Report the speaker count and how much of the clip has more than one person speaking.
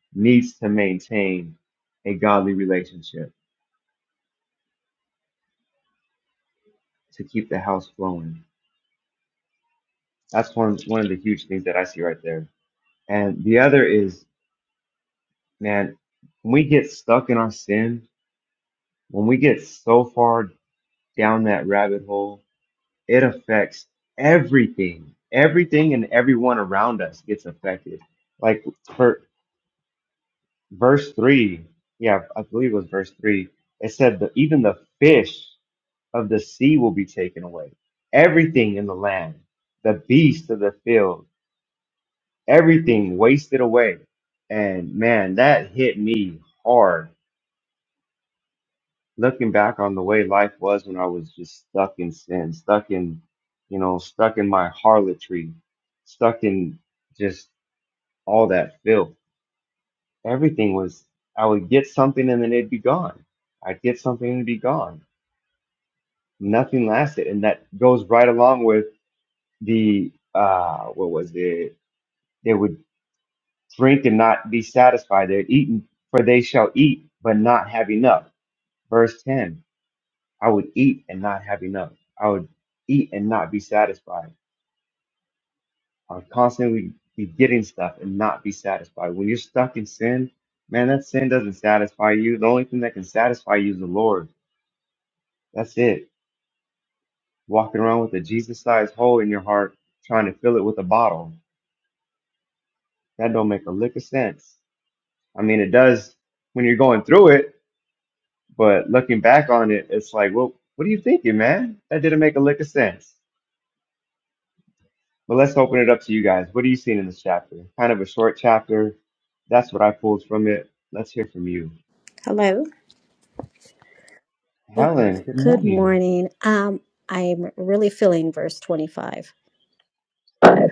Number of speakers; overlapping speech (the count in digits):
2, under 1%